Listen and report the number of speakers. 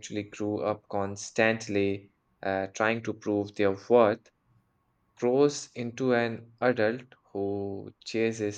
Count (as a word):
one